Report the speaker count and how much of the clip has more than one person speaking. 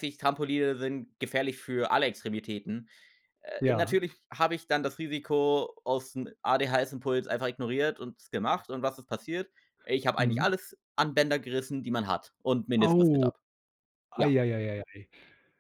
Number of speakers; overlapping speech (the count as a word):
two, about 8%